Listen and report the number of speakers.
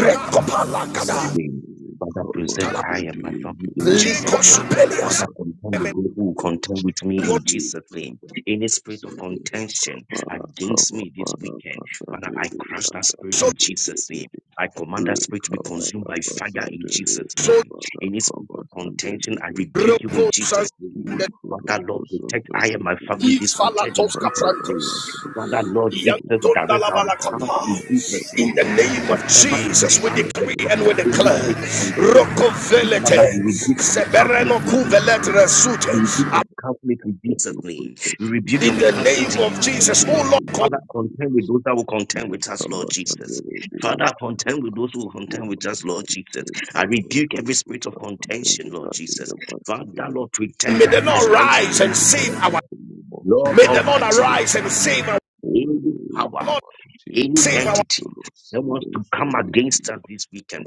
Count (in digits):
3